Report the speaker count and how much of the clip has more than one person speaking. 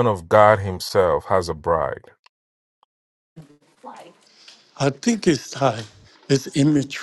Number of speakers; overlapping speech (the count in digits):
2, no overlap